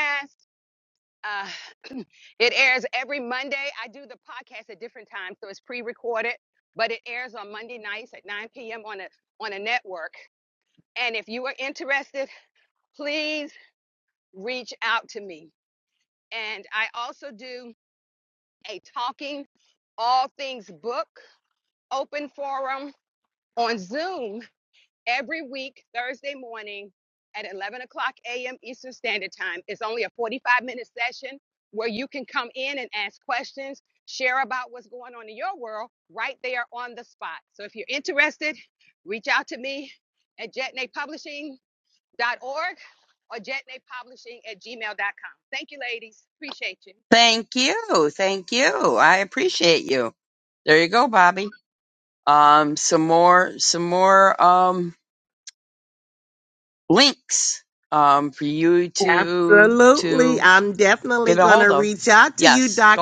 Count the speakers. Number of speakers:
3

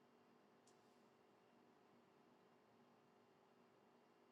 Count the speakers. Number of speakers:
0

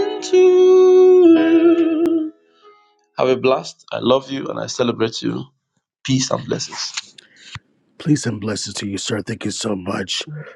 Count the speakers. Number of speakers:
2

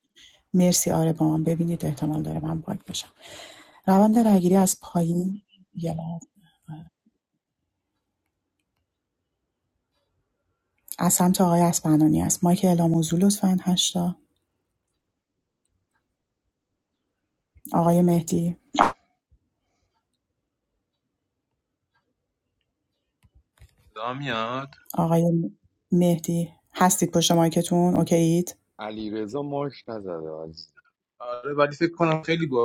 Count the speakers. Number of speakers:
3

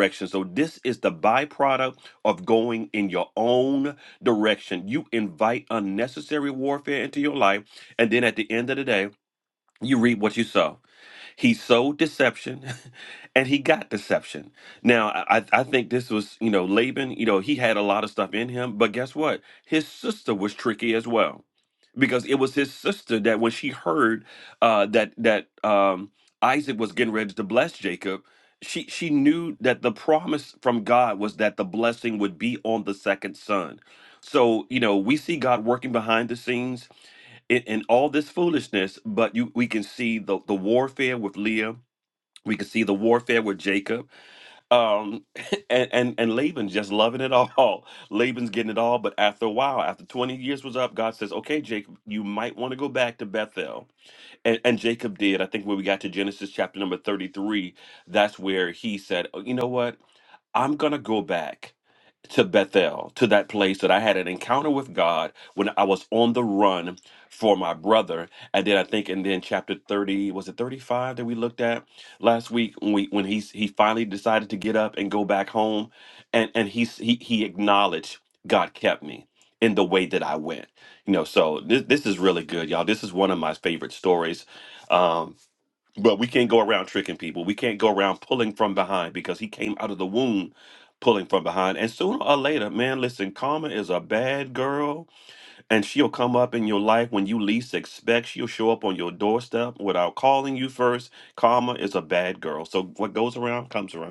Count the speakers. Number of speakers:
1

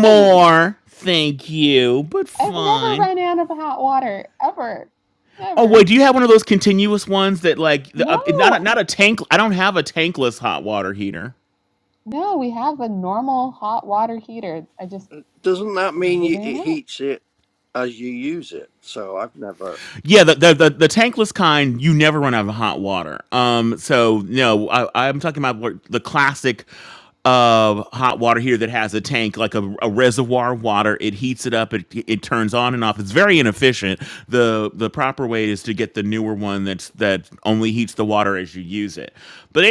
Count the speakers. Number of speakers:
3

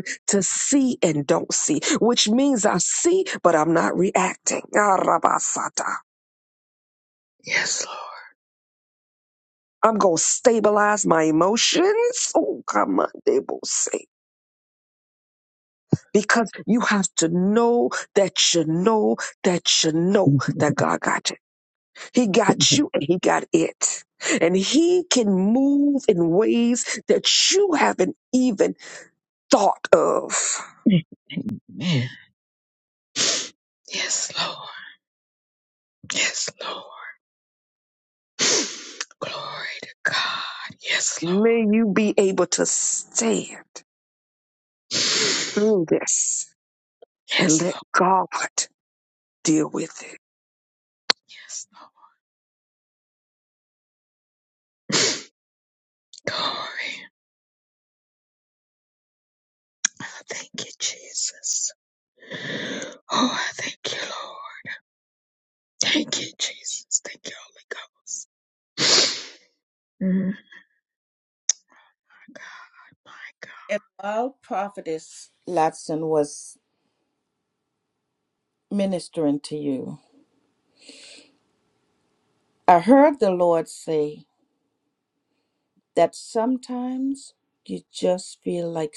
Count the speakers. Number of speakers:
3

